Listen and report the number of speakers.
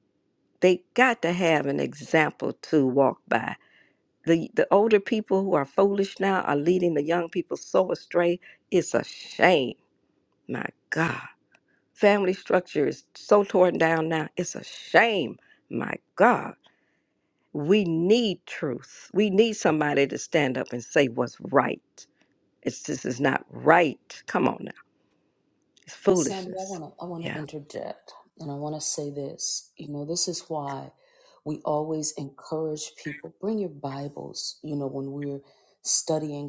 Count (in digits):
2